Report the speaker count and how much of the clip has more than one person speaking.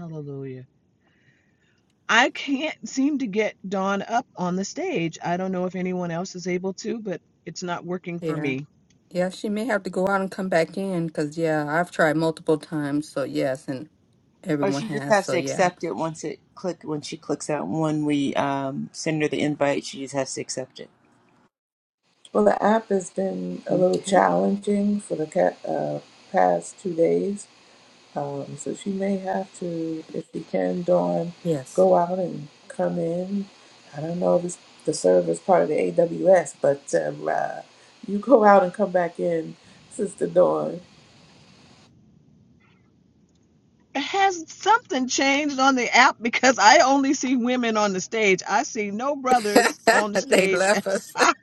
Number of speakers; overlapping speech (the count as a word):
four, about 5%